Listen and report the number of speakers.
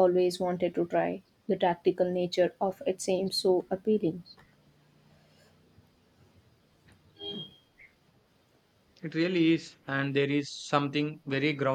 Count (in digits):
2